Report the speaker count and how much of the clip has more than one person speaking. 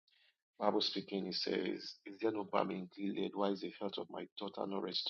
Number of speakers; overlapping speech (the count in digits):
1, no overlap